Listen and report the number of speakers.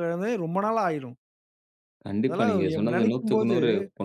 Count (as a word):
two